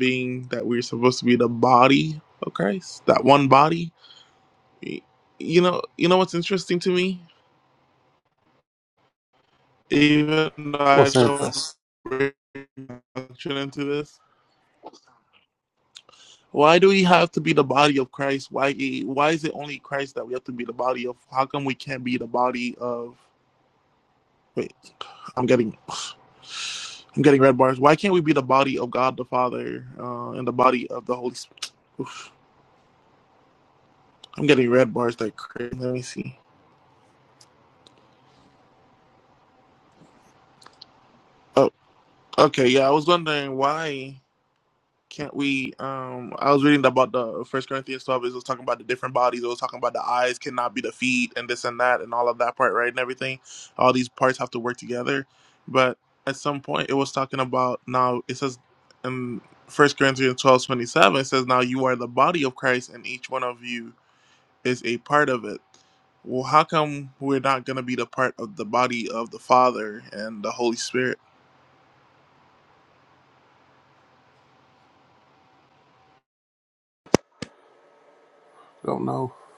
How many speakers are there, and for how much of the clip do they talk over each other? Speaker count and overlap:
two, about 1%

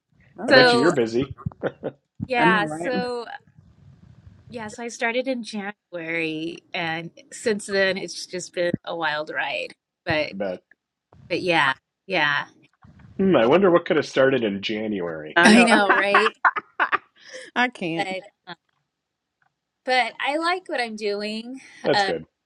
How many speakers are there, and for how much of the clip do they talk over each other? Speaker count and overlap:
three, about 9%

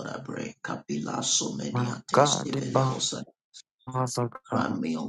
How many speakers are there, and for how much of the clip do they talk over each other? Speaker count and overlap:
two, about 30%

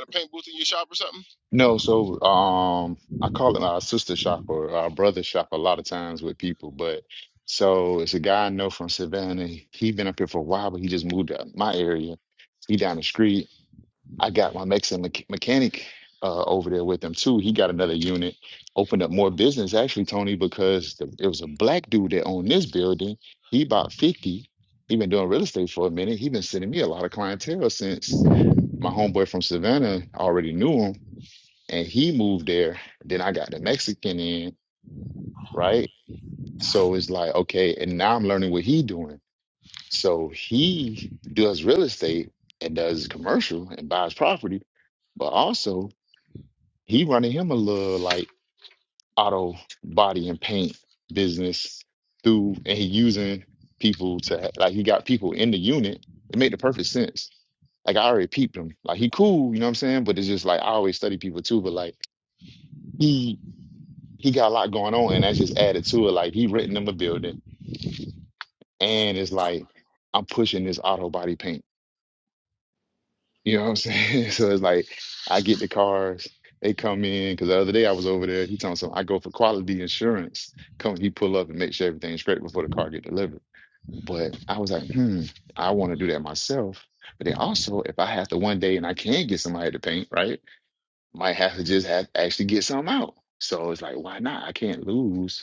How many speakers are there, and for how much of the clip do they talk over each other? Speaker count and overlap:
two, no overlap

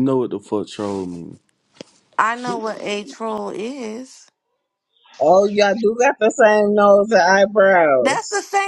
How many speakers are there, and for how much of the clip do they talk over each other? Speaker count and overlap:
three, about 2%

